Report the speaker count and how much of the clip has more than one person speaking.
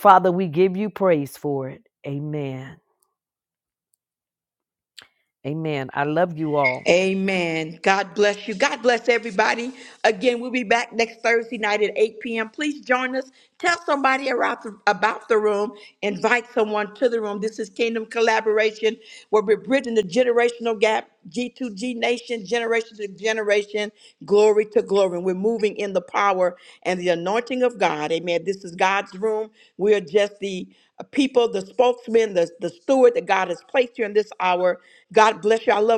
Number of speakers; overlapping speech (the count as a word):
two, no overlap